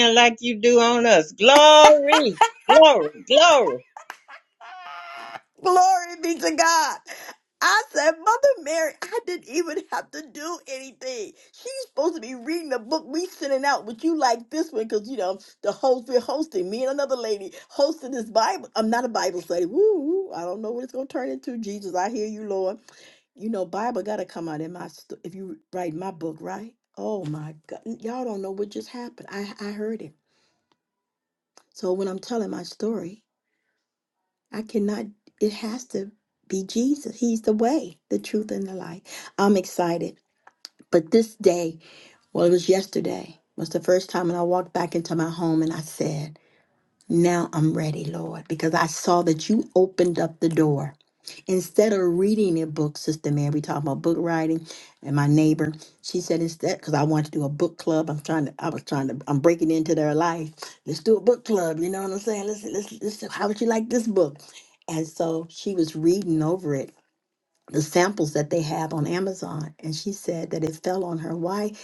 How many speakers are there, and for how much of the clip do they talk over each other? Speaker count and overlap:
two, no overlap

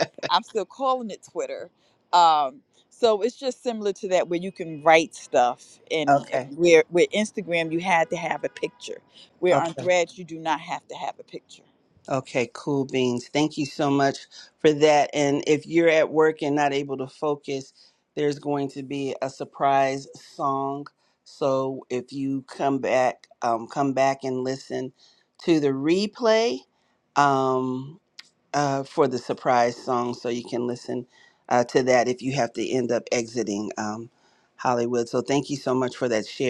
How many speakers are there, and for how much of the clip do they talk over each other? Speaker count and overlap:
two, about 2%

